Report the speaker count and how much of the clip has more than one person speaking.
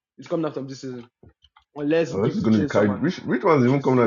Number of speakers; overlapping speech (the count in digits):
2, about 34%